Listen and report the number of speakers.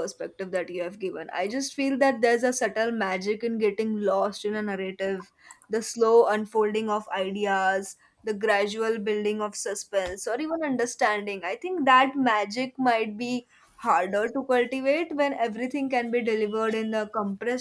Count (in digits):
1